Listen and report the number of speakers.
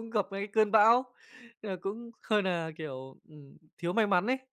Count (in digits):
1